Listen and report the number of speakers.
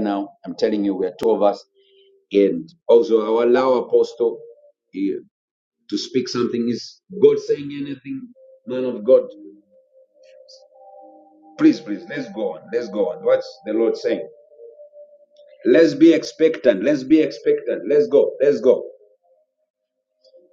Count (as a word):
one